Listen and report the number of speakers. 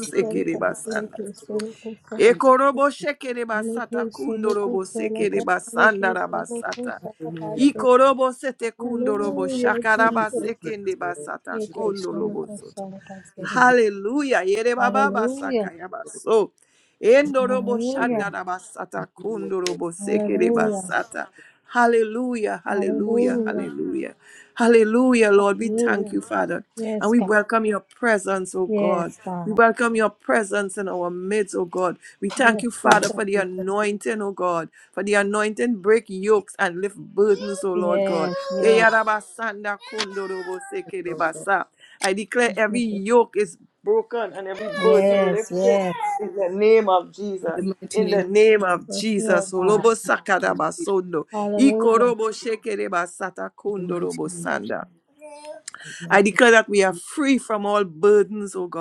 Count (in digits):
3